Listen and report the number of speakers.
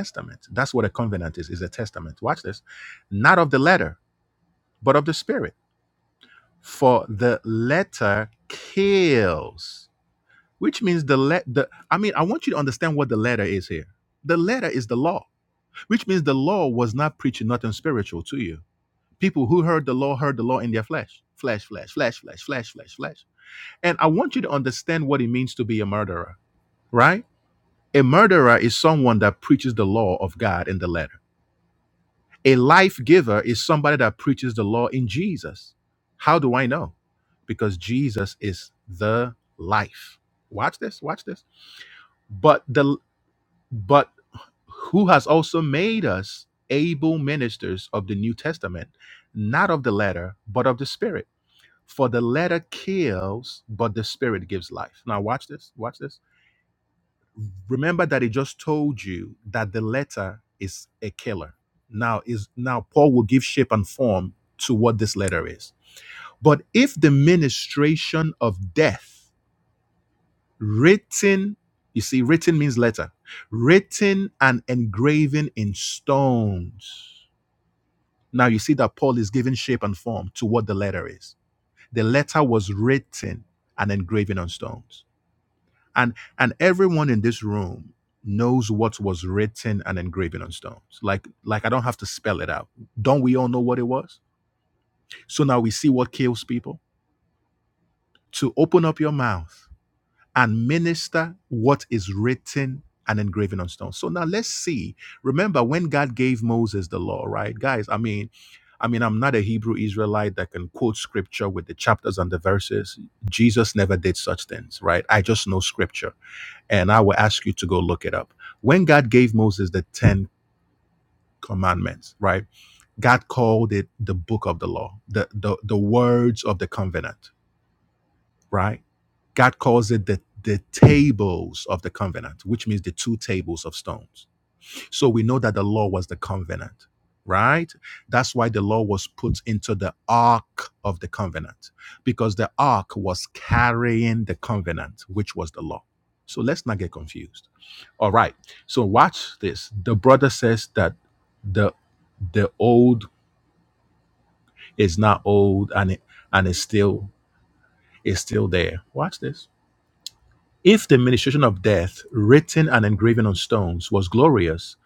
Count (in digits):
1